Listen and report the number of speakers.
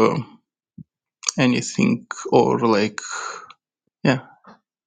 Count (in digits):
1